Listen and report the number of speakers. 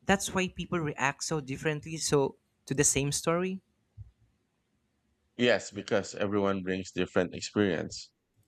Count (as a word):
two